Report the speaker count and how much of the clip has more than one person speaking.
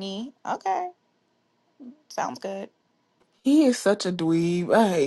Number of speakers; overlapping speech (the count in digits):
2, no overlap